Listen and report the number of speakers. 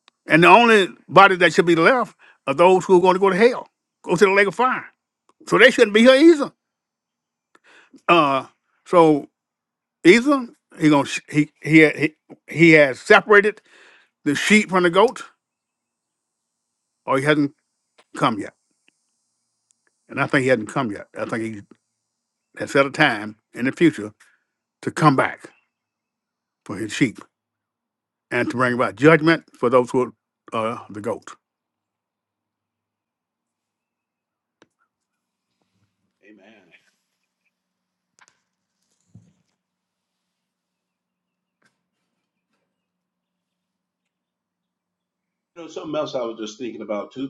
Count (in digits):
2